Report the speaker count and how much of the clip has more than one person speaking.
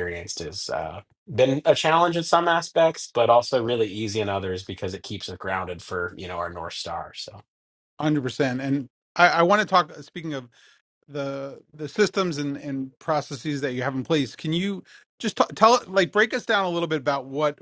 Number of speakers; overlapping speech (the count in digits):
2, no overlap